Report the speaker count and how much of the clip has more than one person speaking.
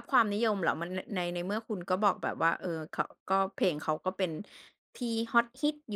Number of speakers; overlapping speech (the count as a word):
one, no overlap